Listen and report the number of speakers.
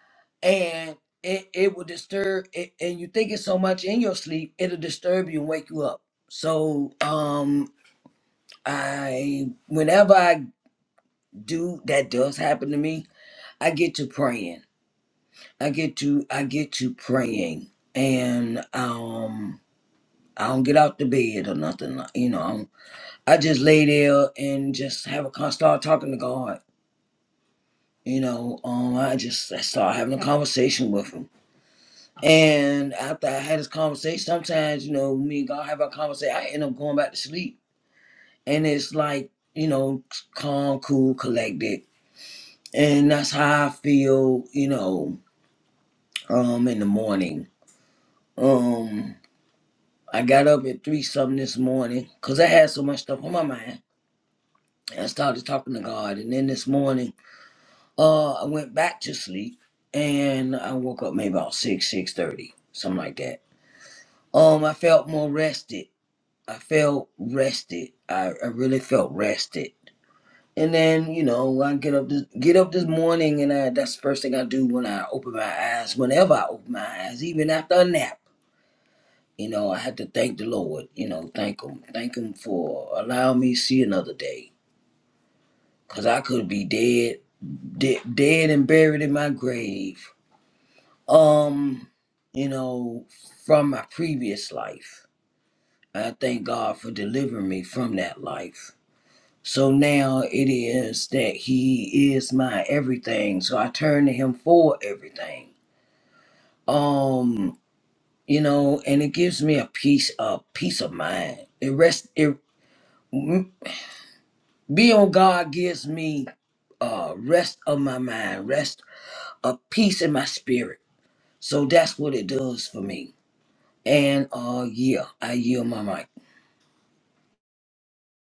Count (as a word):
one